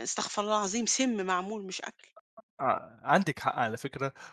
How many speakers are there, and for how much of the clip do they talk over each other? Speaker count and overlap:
two, no overlap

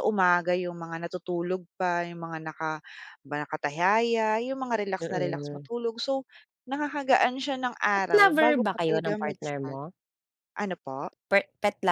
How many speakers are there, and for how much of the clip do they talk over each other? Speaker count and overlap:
two, about 18%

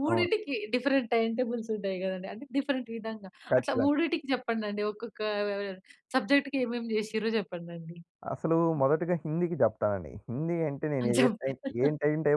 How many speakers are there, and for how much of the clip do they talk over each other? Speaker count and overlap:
two, about 12%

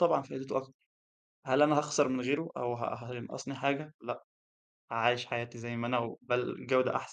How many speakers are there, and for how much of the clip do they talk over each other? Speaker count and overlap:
one, no overlap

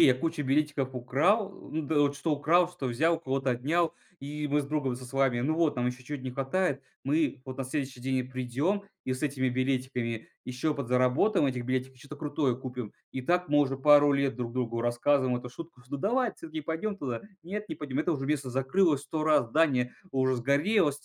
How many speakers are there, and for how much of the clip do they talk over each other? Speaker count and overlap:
one, no overlap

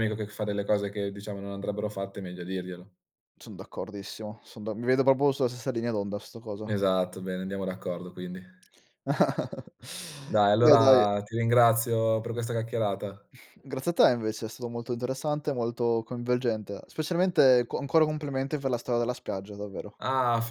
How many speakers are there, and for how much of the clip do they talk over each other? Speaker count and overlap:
two, about 2%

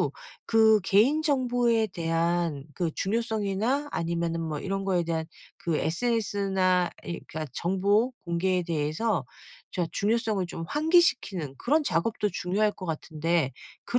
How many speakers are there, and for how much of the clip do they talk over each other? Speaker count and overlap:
one, no overlap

